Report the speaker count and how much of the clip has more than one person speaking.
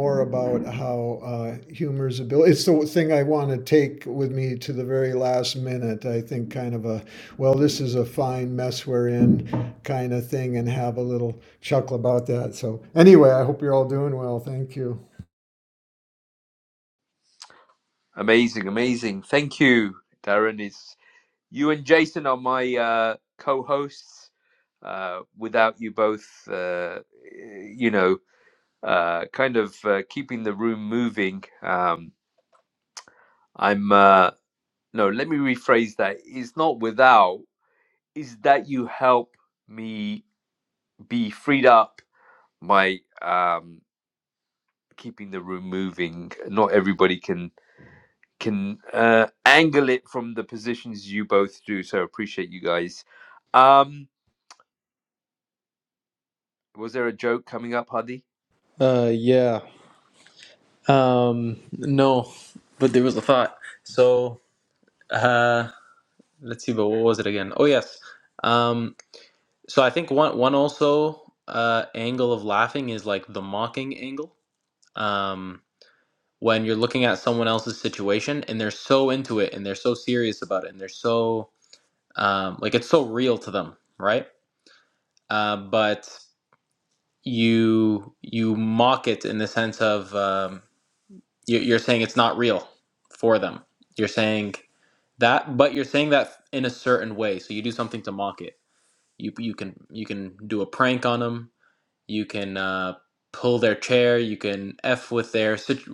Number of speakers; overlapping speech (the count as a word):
three, no overlap